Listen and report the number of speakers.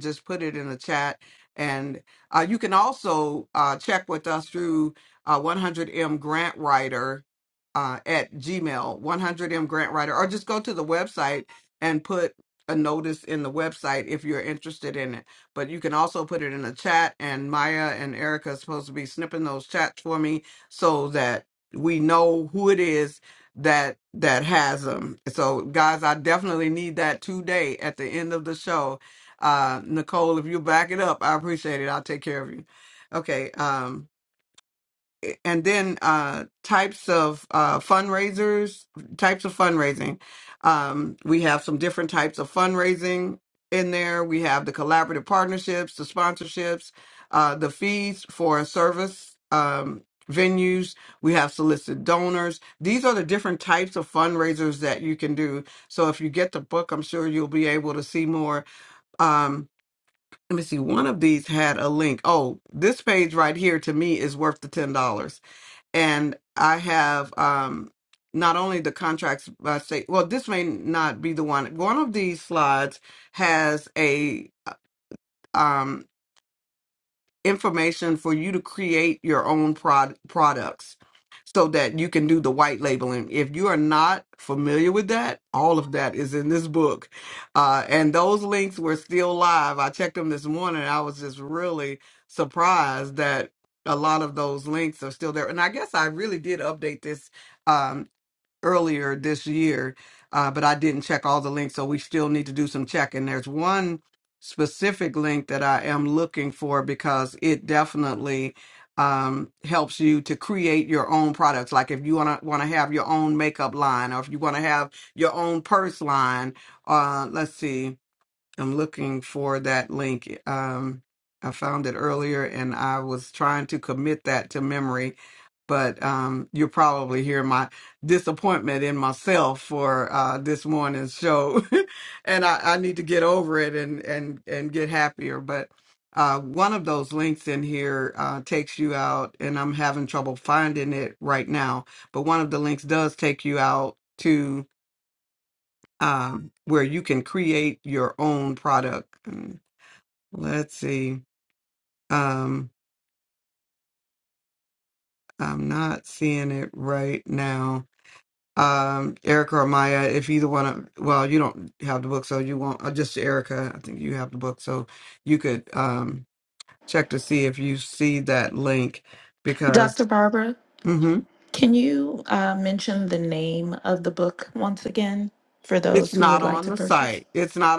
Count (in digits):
2